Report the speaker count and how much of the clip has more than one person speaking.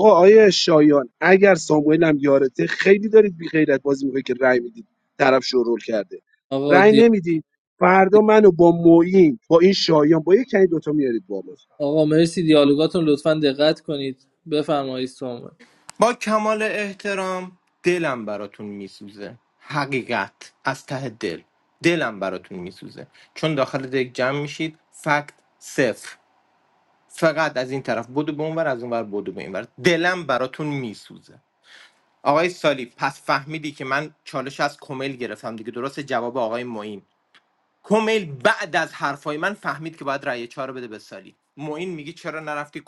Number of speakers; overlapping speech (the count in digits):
3, about 1%